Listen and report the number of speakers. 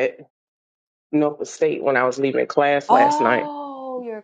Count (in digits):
2